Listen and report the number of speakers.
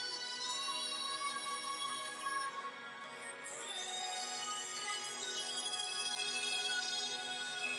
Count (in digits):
0